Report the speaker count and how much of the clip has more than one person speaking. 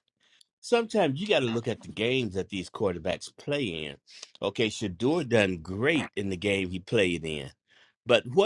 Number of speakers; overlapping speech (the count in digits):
1, no overlap